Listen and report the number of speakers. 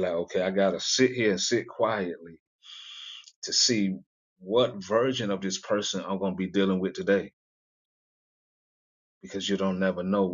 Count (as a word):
one